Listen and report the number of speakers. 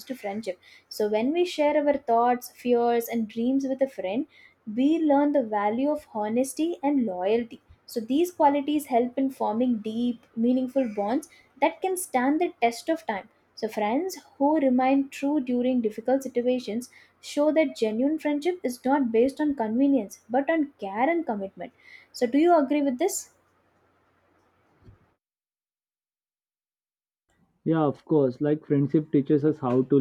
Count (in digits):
2